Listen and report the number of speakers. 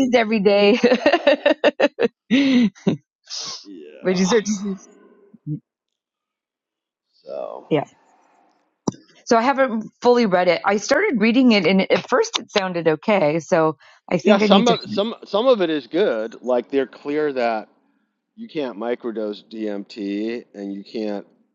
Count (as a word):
two